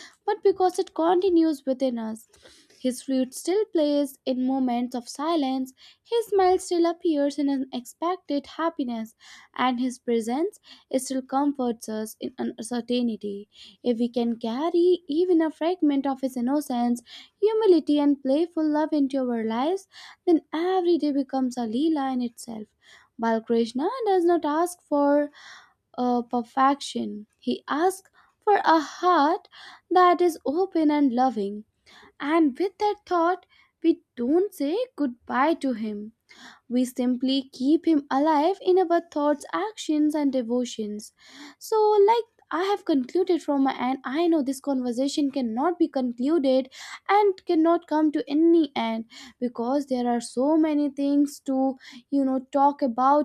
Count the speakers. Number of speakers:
one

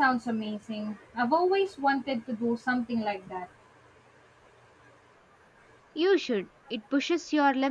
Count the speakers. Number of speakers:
two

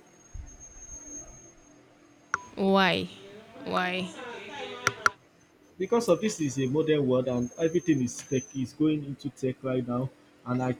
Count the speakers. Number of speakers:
two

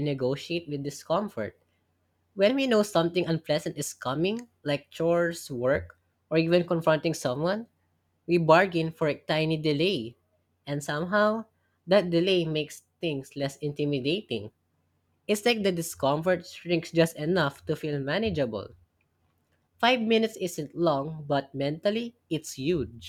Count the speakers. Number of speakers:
one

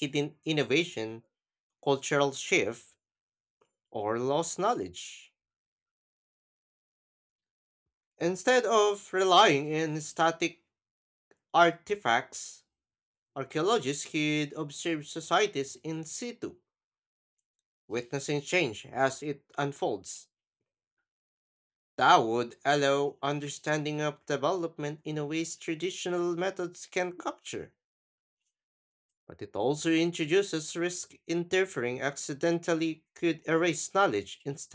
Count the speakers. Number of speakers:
one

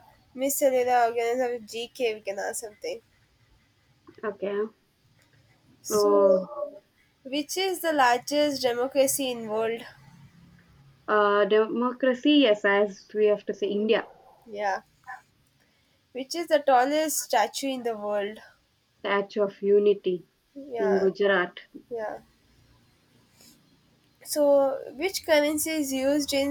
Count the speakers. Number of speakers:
two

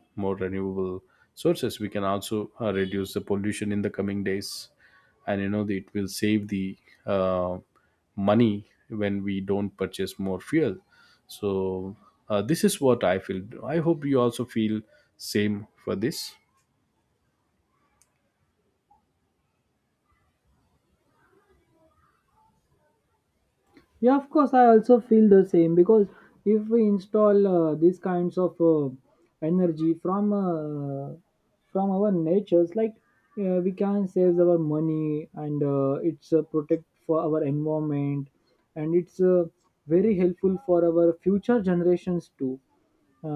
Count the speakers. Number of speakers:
two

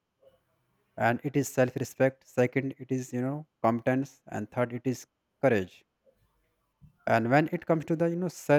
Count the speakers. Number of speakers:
one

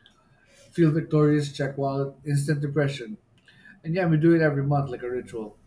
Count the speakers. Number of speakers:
one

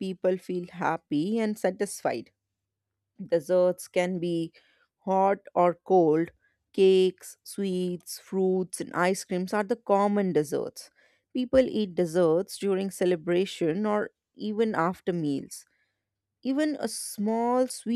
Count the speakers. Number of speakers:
one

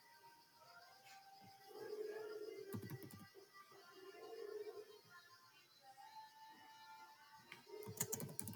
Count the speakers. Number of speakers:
zero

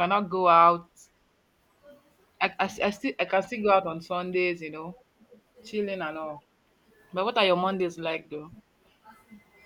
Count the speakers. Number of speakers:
one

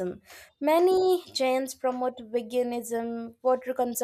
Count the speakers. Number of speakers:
one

